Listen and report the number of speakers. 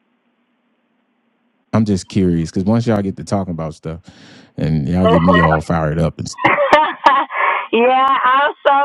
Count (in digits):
2